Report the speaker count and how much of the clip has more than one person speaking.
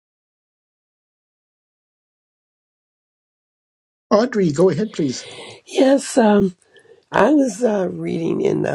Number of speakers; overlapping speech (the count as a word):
two, no overlap